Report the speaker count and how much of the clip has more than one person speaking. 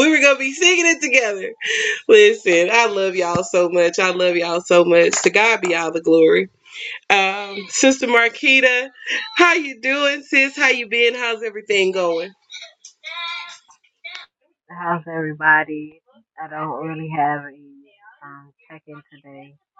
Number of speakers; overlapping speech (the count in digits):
2, no overlap